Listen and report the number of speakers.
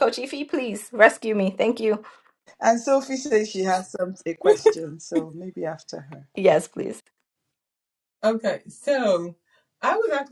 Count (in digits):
3